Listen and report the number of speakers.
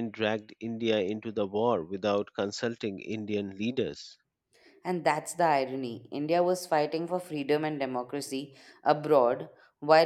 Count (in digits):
2